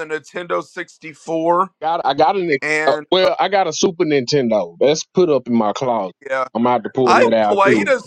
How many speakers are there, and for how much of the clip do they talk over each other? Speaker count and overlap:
2, about 19%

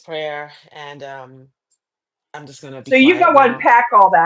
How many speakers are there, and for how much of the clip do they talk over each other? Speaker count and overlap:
2, about 17%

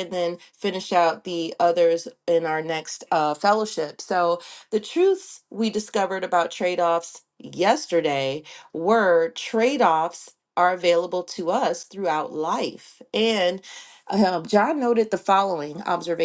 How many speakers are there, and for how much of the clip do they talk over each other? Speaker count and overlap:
1, no overlap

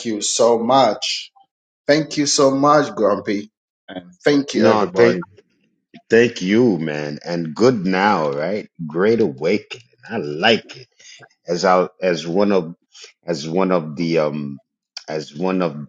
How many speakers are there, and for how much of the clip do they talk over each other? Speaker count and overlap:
2, about 4%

